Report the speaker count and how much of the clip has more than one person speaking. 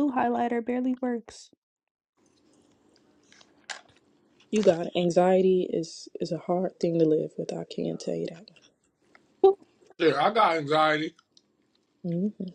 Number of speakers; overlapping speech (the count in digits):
3, no overlap